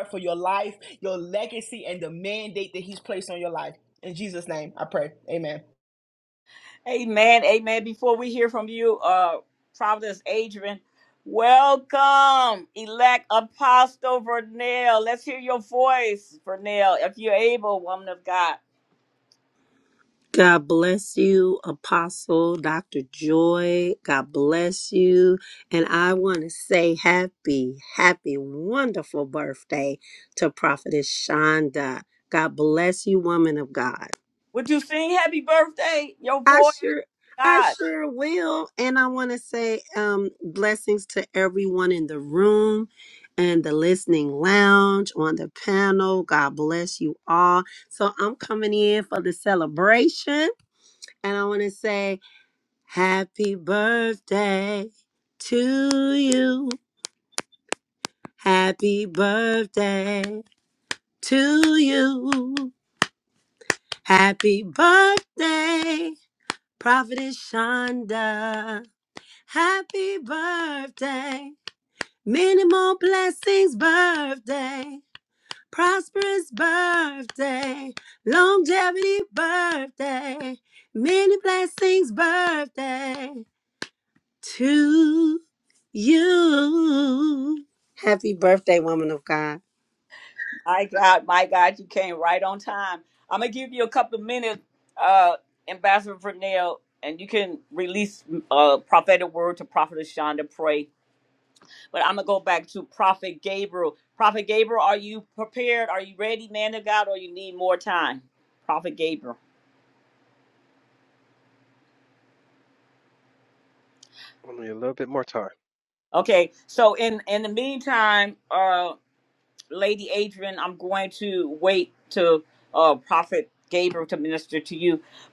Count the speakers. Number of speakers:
four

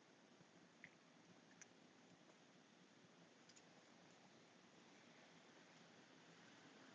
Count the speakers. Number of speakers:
zero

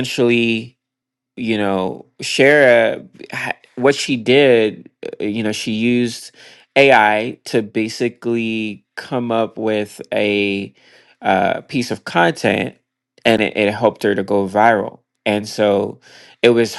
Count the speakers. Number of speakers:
one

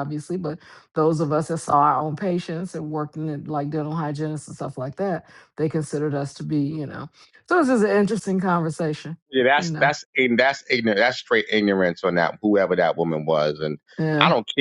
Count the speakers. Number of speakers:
two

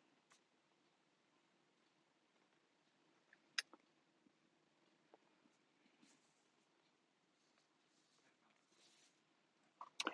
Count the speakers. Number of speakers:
zero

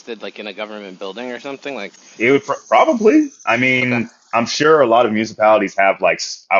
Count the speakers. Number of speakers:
two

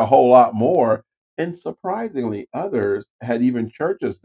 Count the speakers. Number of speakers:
one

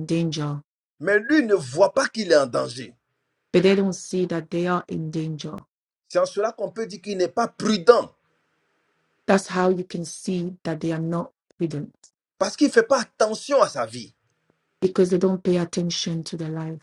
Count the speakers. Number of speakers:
two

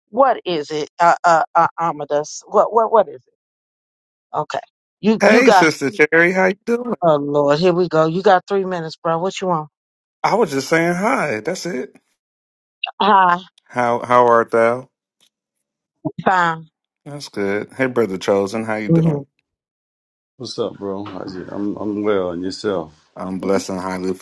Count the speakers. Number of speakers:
three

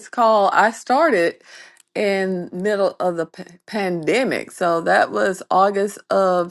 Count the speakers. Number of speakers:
one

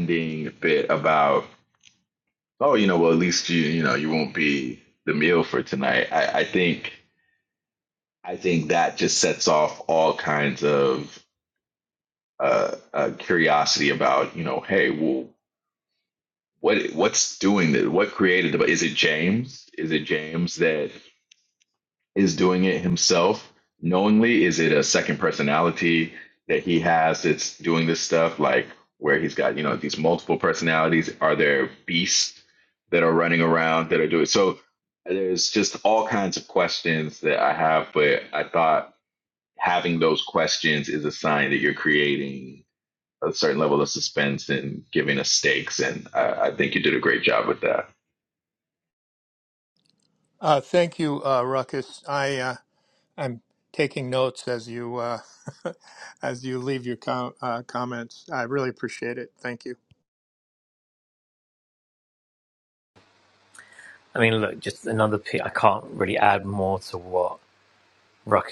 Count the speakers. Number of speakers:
three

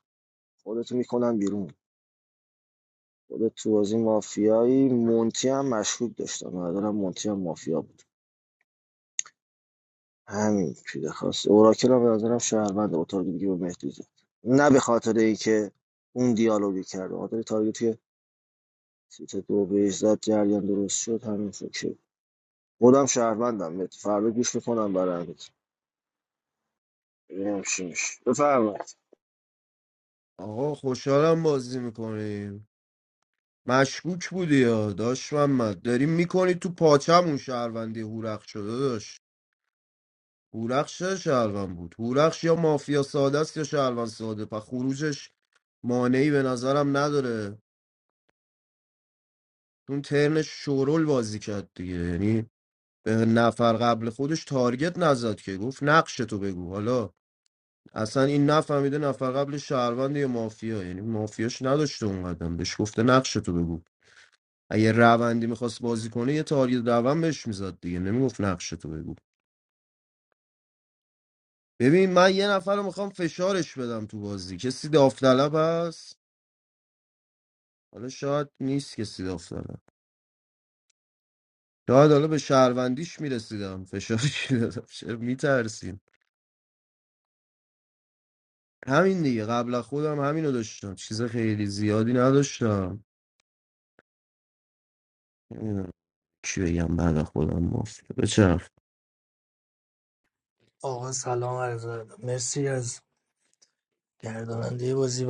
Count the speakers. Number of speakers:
three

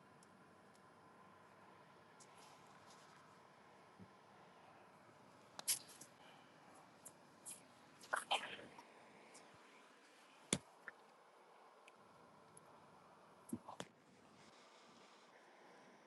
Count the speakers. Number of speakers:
zero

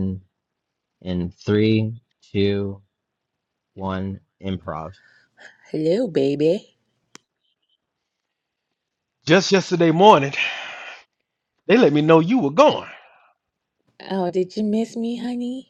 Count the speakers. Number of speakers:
three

